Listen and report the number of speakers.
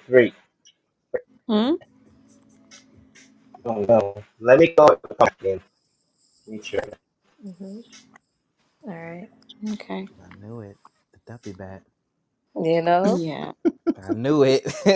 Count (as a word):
four